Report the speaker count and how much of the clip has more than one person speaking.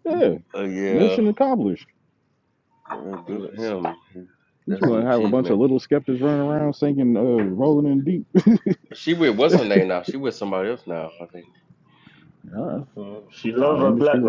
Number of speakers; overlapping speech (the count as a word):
three, about 13%